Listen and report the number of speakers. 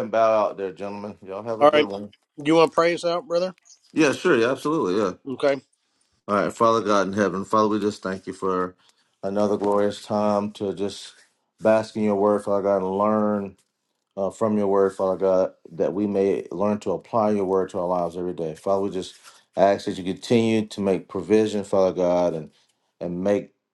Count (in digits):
2